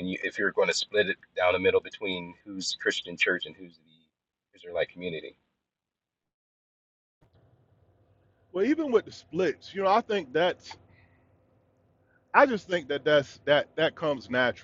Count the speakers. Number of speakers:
2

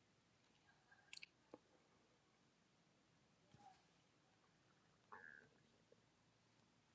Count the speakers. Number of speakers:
0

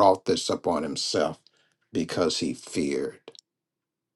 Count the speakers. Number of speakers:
1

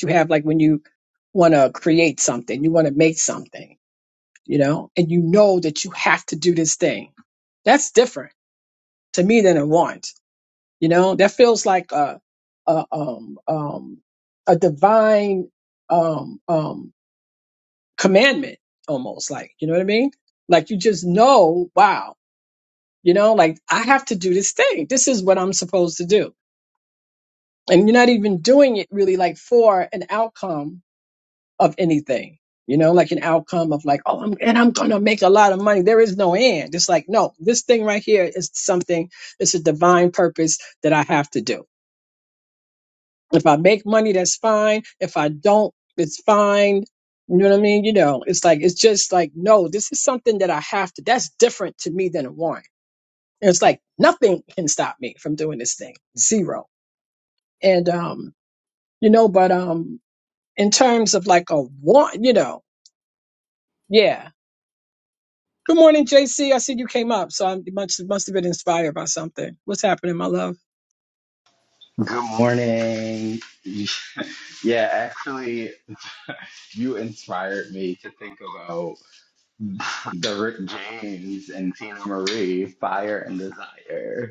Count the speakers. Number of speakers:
2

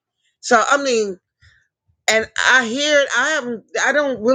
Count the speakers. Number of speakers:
1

